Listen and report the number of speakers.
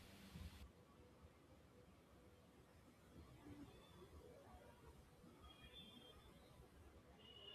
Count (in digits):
0